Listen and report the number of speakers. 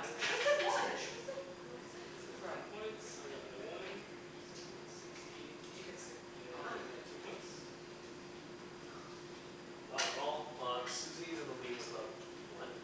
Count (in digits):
3